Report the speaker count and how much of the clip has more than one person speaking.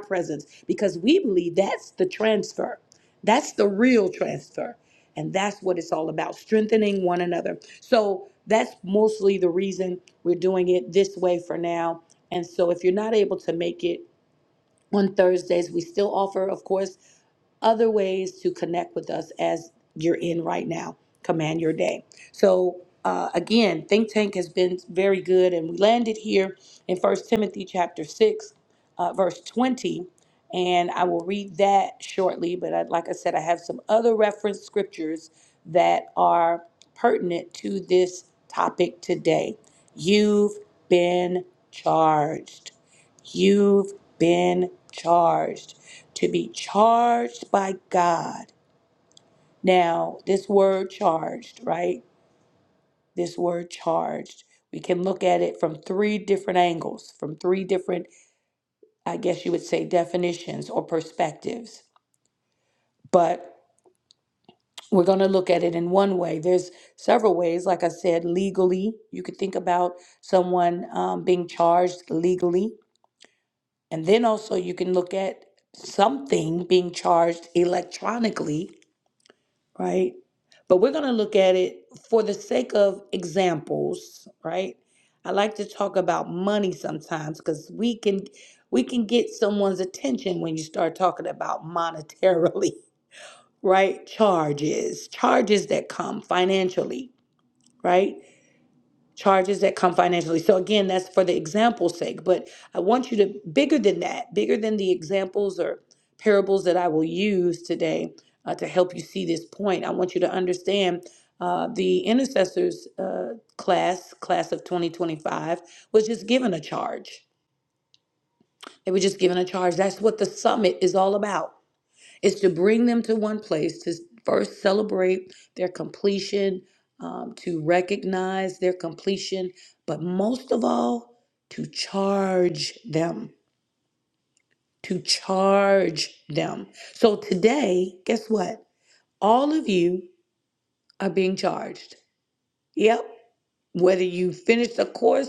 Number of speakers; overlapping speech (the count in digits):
1, no overlap